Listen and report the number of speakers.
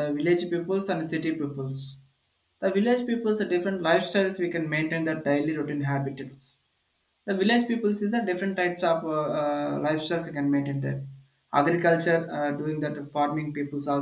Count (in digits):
1